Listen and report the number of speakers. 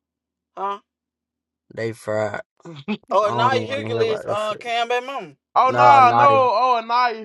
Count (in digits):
3